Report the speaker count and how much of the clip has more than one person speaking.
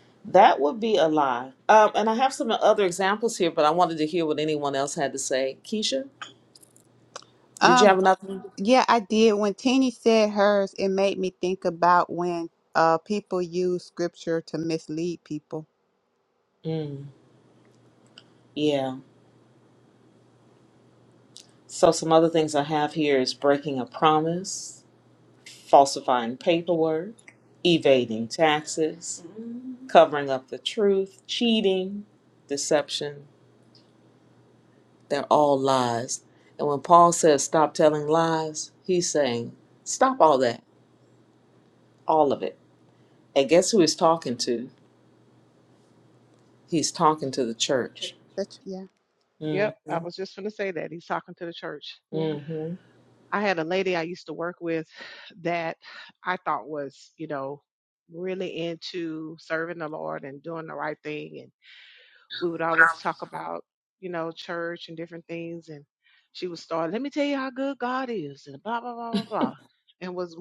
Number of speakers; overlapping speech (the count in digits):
3, about 1%